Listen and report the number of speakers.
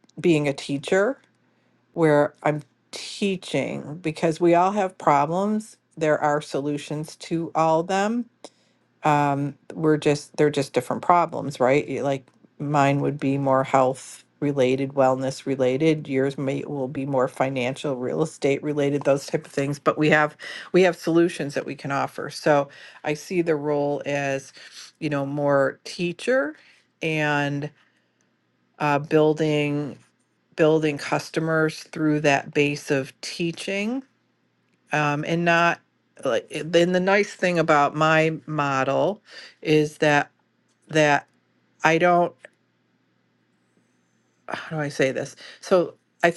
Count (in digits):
1